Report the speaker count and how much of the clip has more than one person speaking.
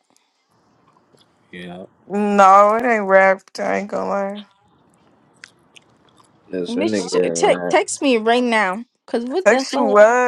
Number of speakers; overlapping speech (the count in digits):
3, about 16%